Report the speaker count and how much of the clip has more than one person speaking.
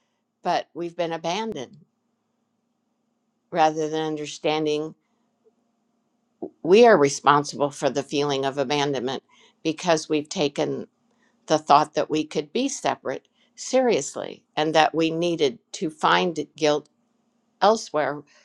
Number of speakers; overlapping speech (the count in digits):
1, no overlap